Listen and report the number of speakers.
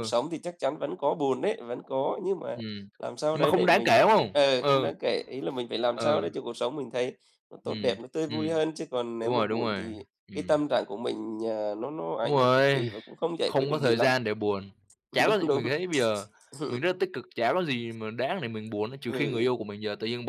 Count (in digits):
2